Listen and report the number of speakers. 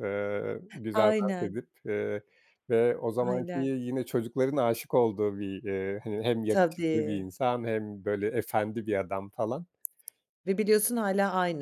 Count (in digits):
2